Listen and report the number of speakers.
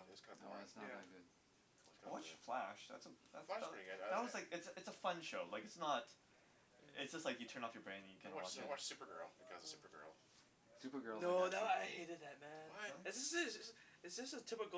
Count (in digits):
4